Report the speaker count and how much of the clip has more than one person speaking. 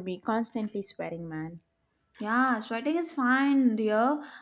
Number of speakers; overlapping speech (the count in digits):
2, no overlap